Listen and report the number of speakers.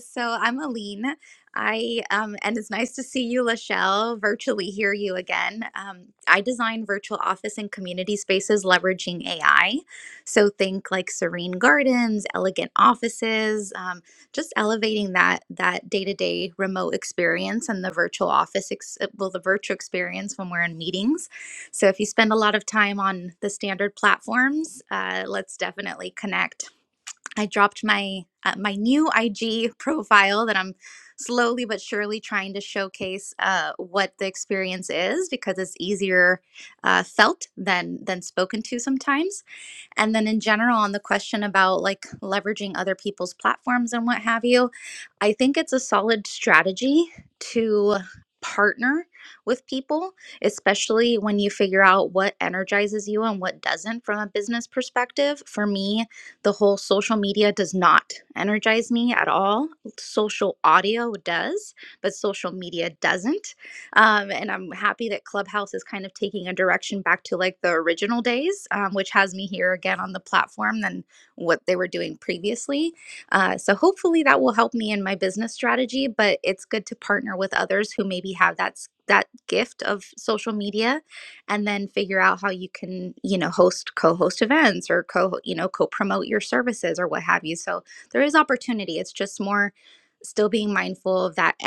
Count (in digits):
1